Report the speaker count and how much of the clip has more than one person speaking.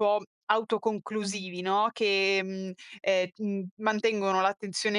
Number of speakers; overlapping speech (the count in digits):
1, no overlap